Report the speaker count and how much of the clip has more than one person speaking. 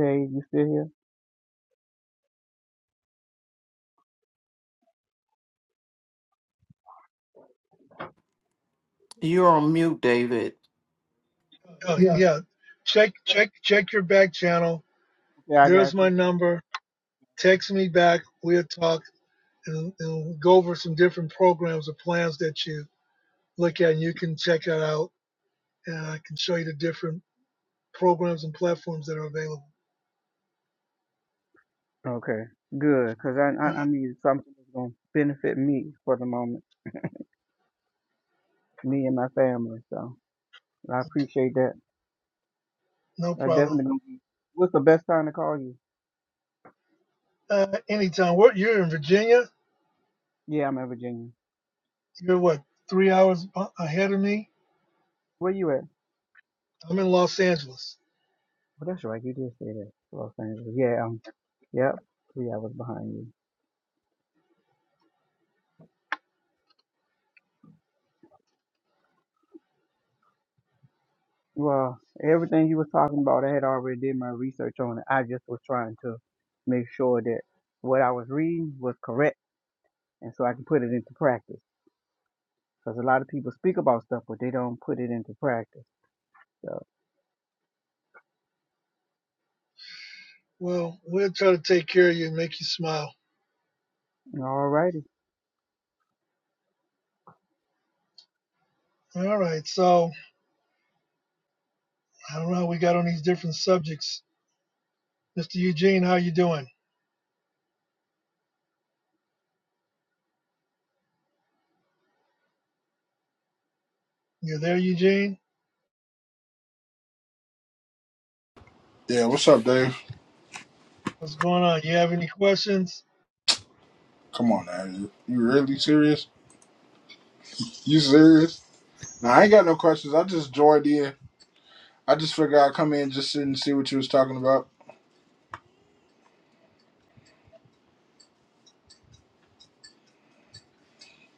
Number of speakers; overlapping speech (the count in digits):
4, about 1%